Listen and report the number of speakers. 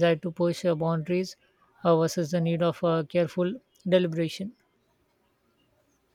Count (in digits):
1